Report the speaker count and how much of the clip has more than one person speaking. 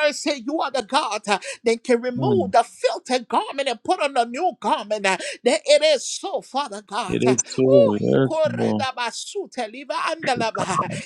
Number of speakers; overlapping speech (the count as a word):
two, about 15%